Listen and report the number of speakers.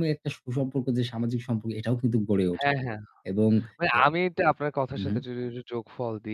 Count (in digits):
2